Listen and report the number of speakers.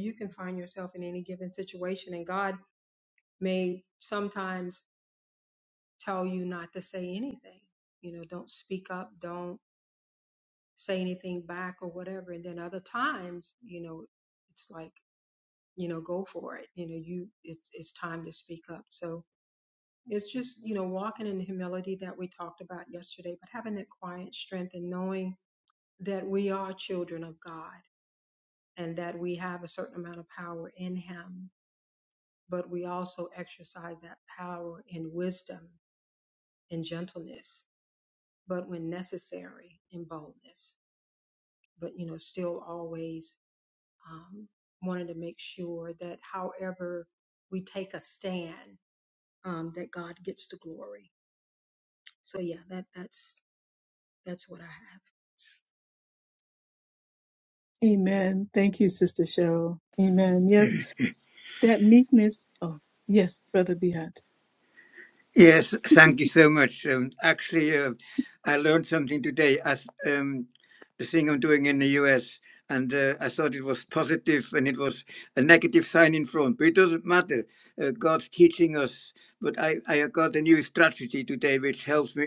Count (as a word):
three